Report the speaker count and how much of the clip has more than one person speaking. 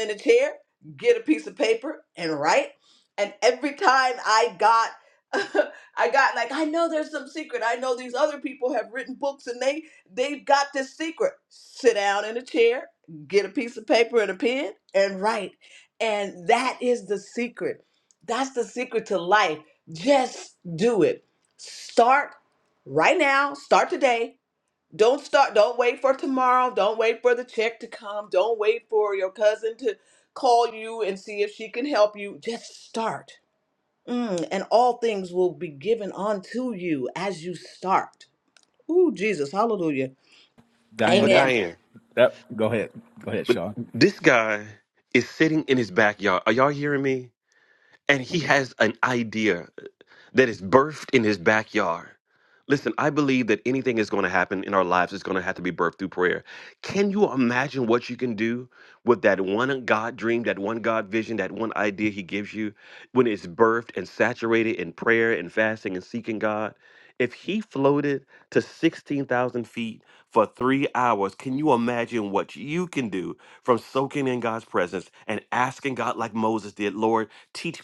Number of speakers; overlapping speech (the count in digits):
3, about 1%